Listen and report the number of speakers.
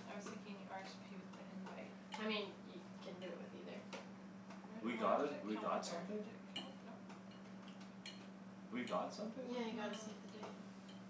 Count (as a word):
three